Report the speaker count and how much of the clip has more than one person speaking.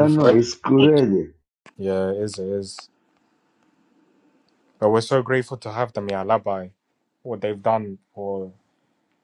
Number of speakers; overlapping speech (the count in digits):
2, about 5%